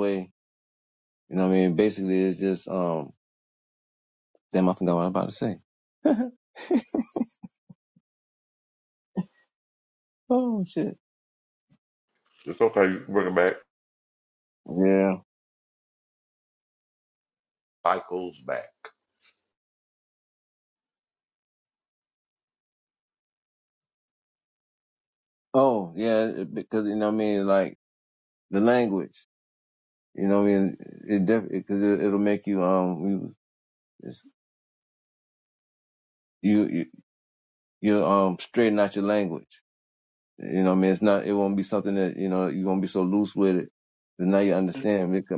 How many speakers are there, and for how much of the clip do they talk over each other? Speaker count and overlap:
two, no overlap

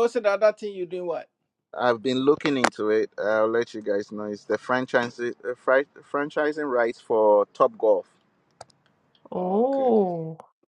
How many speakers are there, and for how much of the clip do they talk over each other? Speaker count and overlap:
three, about 5%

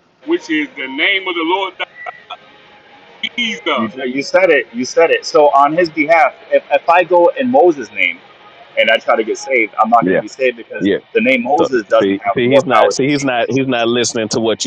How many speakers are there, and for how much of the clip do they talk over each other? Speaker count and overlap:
three, about 14%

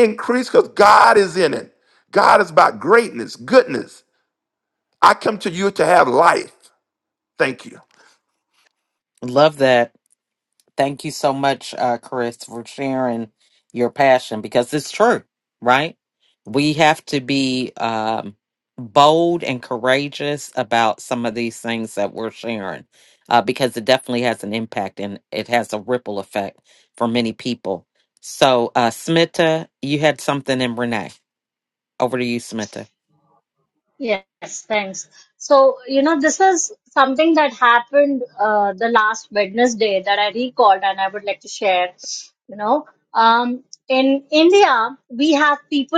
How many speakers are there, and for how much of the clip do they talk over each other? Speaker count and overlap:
three, no overlap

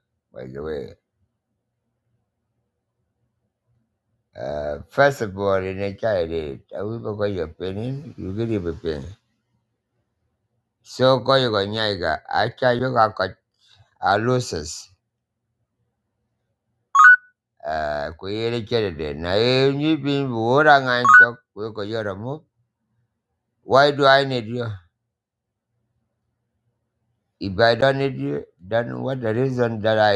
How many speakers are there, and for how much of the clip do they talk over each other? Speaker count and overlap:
one, no overlap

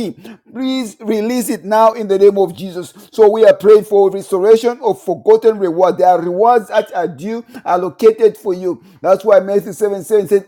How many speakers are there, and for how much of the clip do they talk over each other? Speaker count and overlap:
one, no overlap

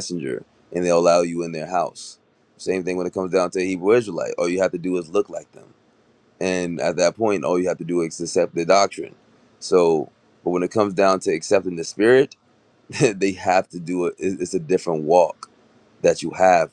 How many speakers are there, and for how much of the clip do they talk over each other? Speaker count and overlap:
one, no overlap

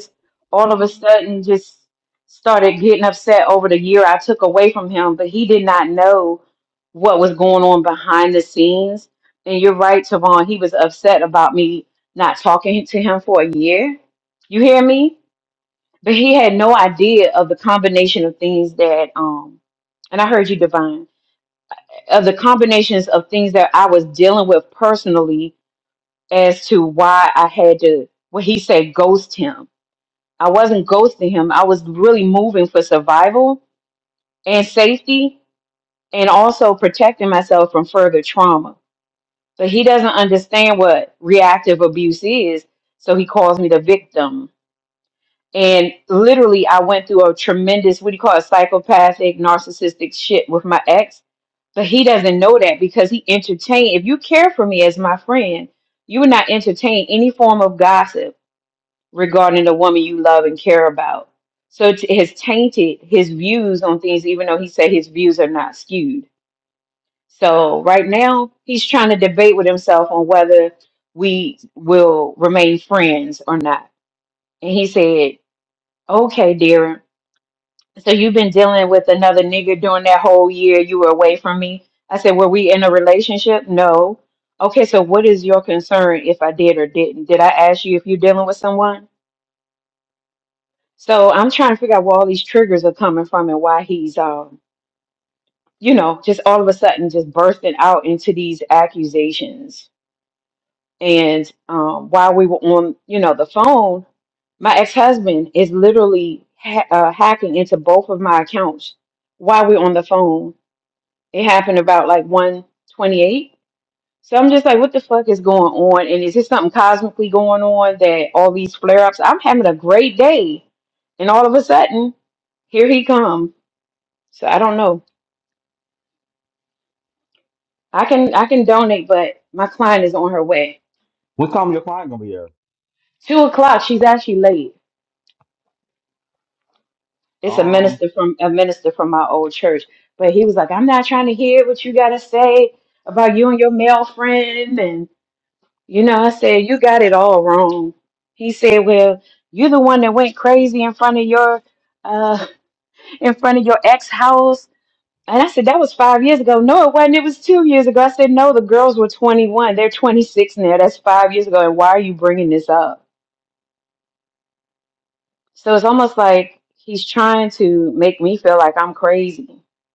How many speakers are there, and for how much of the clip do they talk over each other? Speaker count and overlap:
two, under 1%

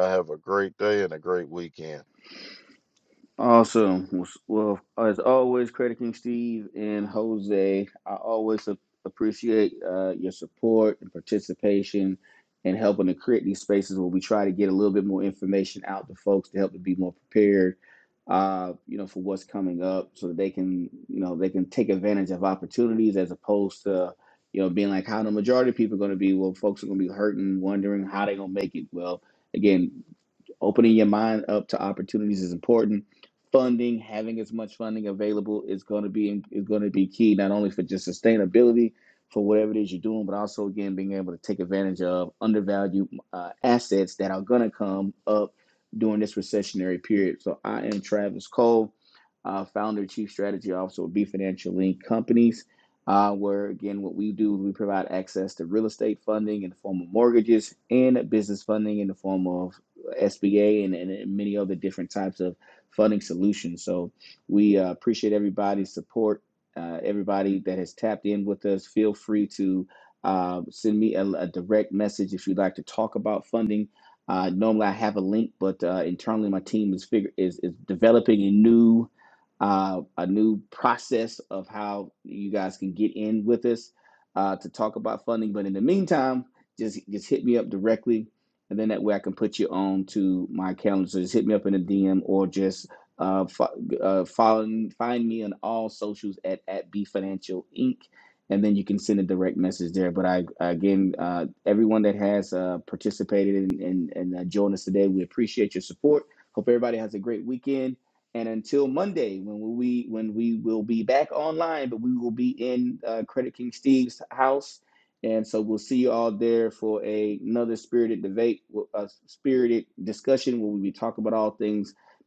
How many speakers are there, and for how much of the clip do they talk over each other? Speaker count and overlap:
two, no overlap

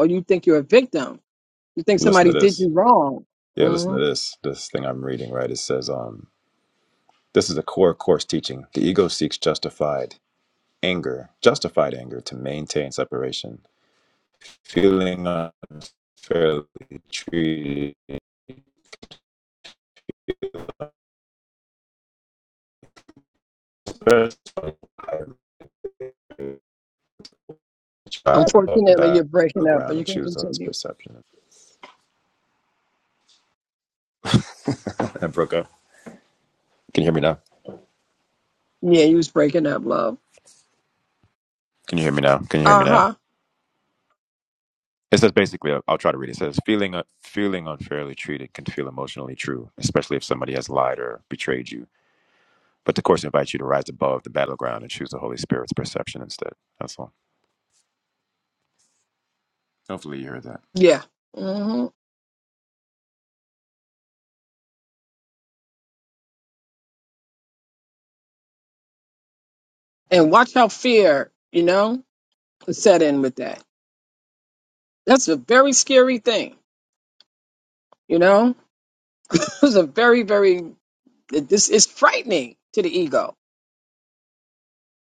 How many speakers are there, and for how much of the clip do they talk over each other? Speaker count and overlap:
two, about 4%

